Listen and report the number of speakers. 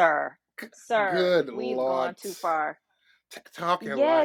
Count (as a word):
two